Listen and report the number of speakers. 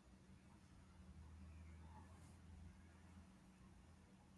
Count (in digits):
0